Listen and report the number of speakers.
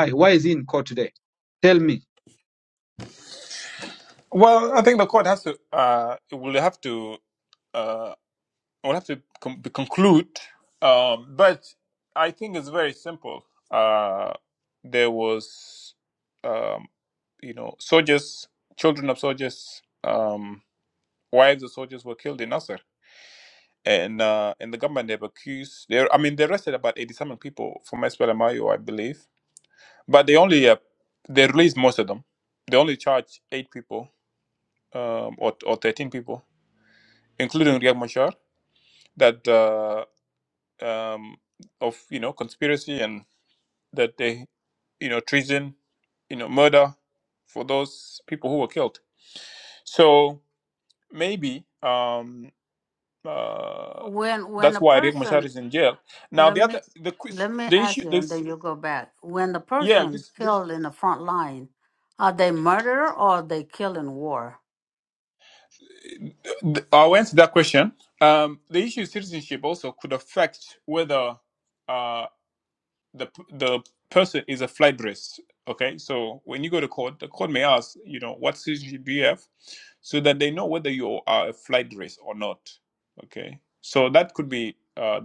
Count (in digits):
3